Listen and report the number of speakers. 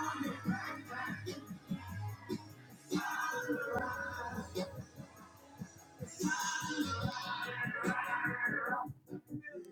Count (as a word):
zero